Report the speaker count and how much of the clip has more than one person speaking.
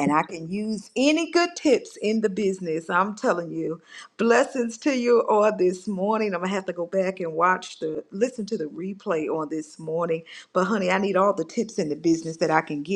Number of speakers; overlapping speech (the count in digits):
1, no overlap